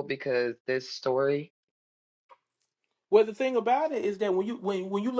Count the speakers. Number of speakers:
two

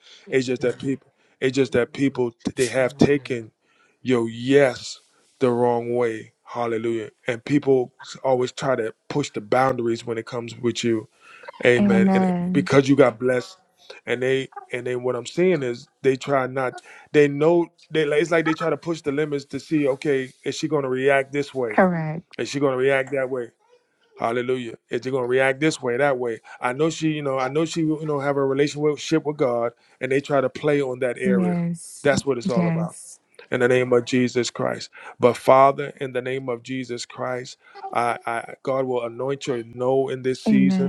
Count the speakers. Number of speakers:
two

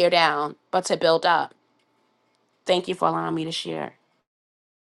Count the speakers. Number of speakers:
one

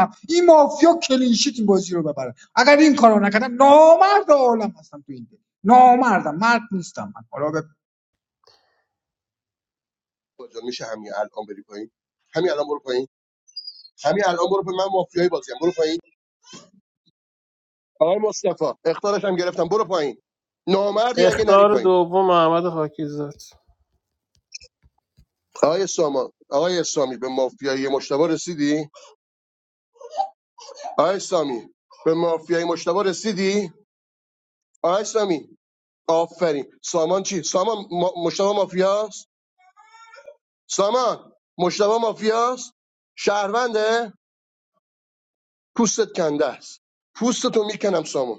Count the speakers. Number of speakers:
three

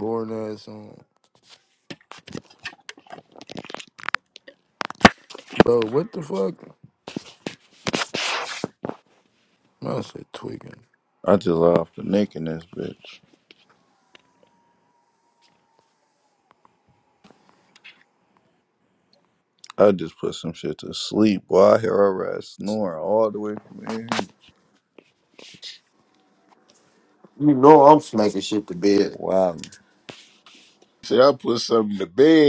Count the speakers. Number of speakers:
four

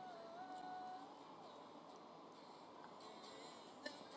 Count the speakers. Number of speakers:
zero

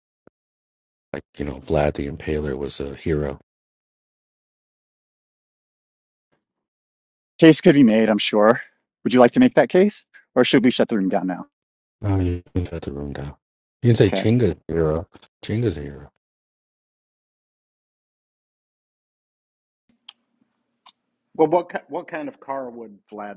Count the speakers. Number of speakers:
three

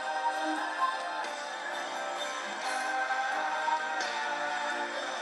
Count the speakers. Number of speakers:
zero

